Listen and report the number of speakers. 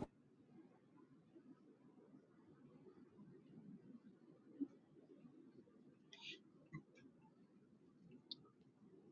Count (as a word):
zero